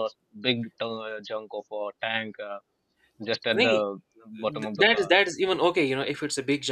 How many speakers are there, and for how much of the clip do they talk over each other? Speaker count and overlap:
two, about 13%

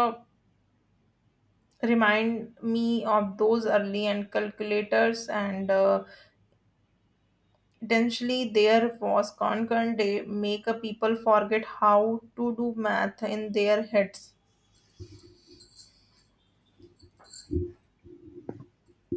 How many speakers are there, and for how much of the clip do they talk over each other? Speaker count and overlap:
one, no overlap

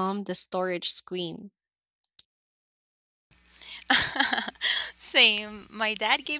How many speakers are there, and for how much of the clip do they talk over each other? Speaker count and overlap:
two, no overlap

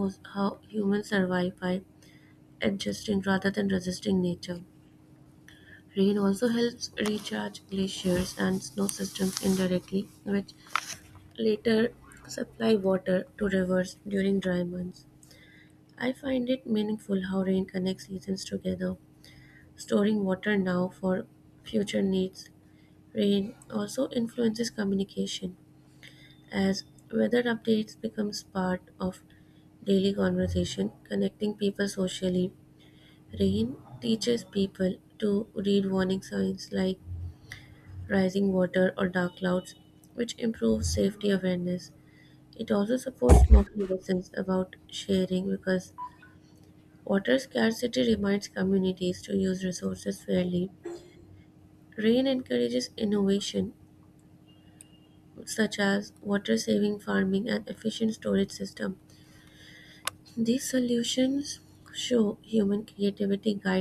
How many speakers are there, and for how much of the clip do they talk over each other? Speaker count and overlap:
one, no overlap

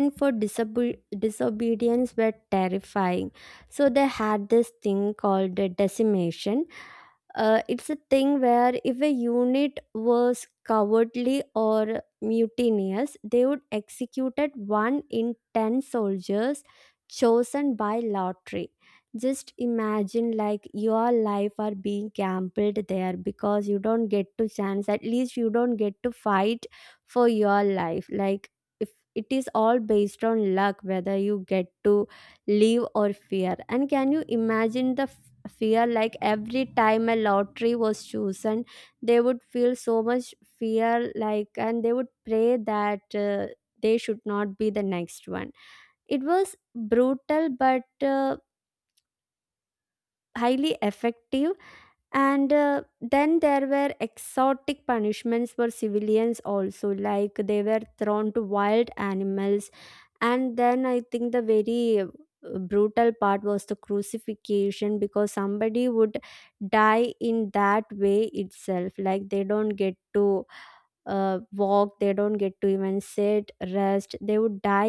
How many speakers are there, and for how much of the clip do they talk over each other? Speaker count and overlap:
one, no overlap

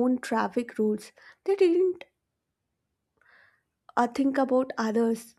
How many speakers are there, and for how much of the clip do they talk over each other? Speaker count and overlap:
one, no overlap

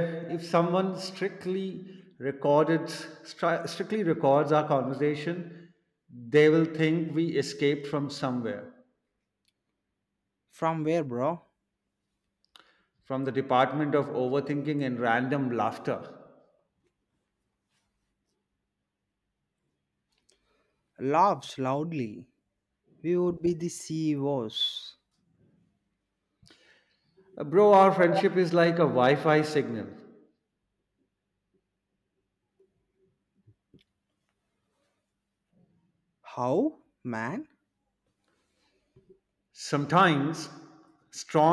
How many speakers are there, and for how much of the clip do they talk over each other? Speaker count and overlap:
two, no overlap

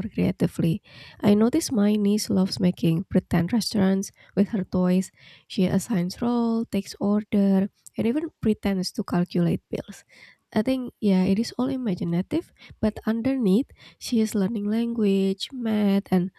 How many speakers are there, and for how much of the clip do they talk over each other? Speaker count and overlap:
one, no overlap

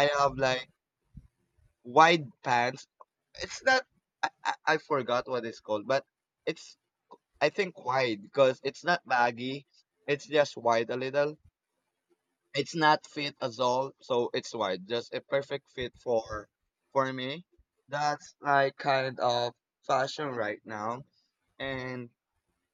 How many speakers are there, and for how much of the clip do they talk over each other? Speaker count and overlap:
one, no overlap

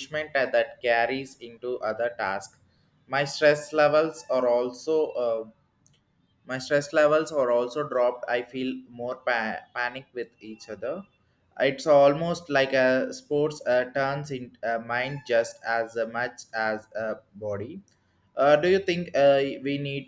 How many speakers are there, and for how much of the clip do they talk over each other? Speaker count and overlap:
one, no overlap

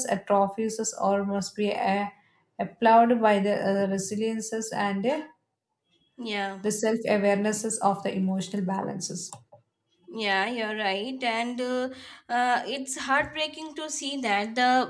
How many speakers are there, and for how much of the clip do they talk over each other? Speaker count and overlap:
two, no overlap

